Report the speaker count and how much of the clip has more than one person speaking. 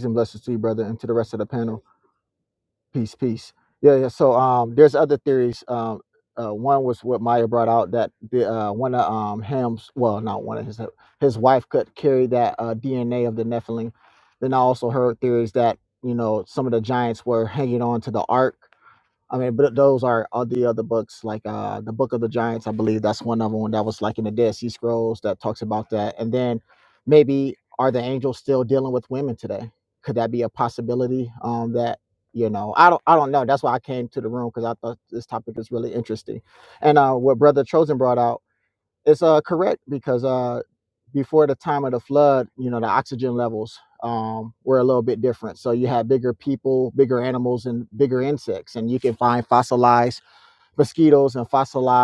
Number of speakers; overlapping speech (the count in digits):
1, no overlap